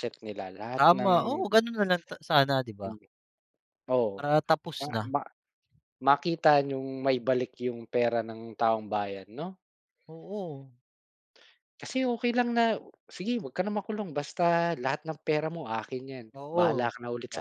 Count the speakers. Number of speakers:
2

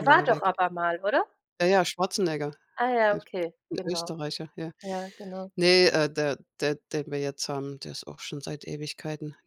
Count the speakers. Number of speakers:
2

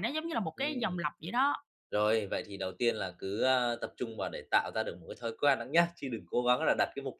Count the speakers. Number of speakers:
2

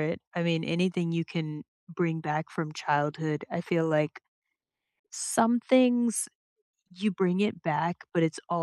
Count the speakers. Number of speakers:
1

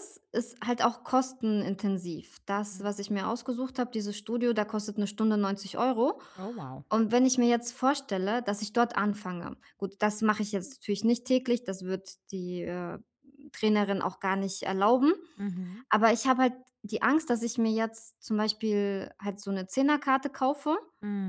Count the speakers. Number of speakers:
2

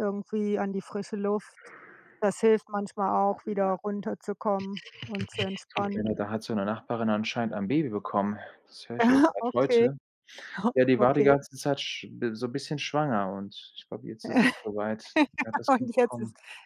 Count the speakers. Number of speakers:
2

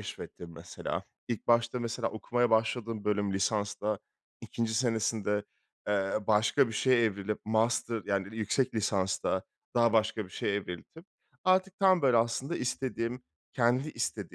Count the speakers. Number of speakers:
1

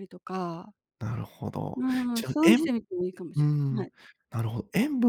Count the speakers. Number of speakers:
2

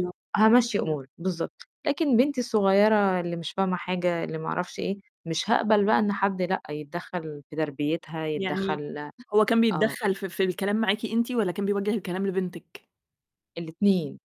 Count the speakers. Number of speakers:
2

